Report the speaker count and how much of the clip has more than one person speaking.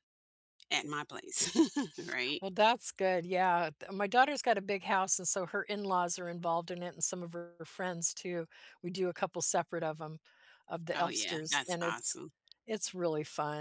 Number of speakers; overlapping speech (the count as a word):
two, about 7%